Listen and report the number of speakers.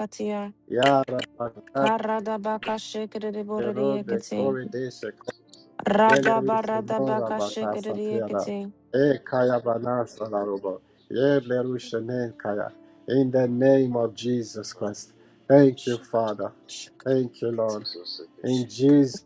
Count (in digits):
3